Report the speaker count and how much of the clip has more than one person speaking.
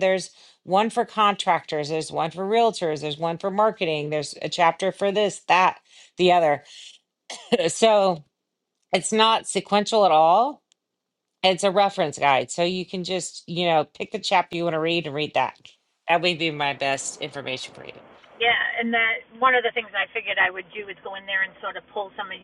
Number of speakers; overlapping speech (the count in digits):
2, no overlap